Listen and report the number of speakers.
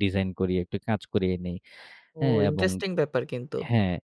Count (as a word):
two